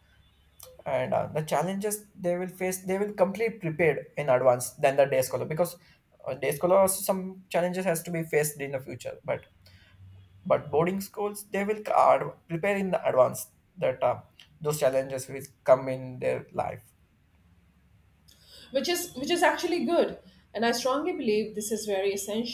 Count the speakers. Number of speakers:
2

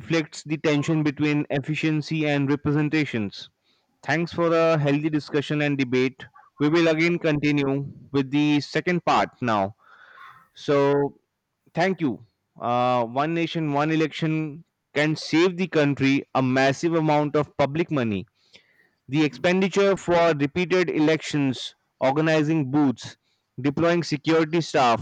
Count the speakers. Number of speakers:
1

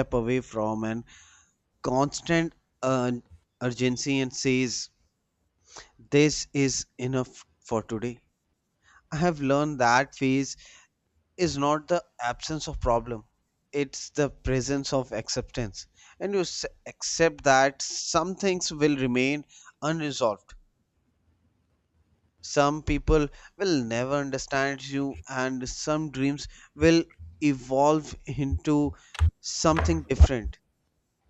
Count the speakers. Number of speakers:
1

